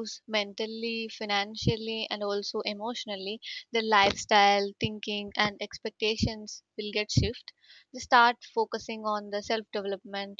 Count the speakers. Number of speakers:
one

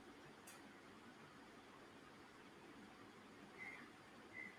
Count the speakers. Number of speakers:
zero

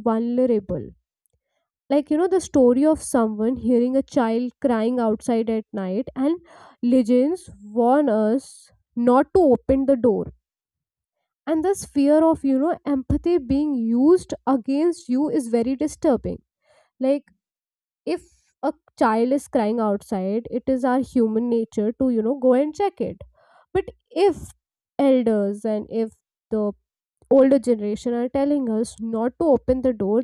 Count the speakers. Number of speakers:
one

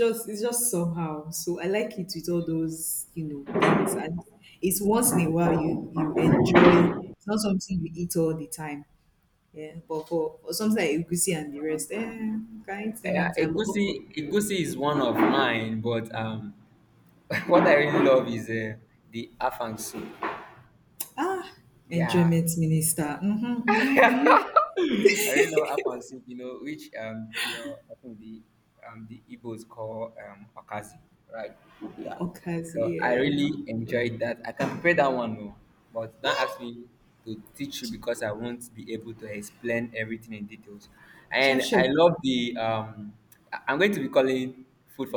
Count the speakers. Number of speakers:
two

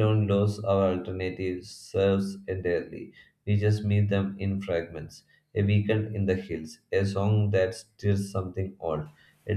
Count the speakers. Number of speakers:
one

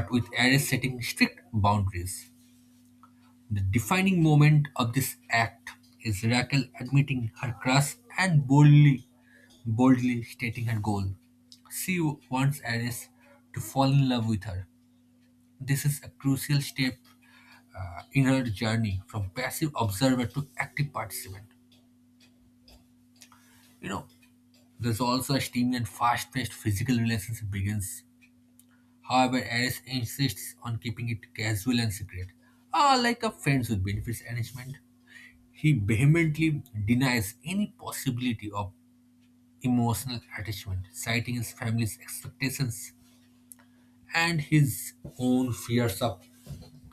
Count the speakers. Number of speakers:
one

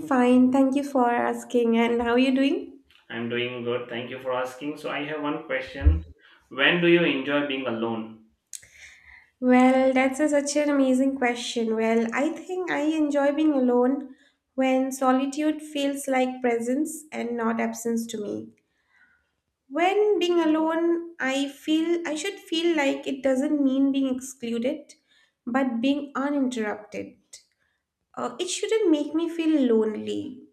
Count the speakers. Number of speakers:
two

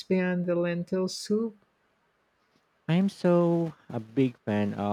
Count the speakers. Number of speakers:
two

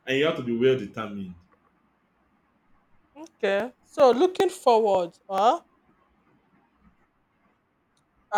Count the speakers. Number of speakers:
two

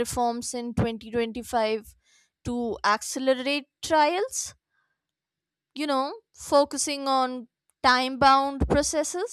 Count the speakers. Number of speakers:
one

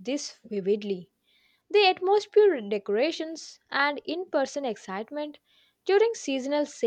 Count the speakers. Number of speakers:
one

